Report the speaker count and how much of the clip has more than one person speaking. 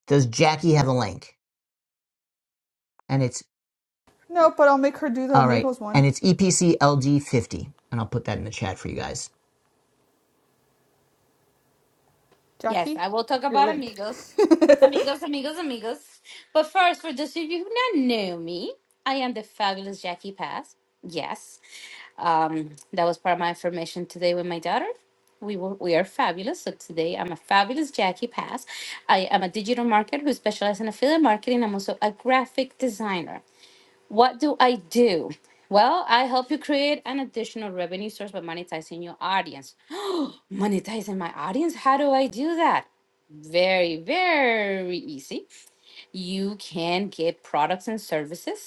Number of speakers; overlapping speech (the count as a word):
three, about 3%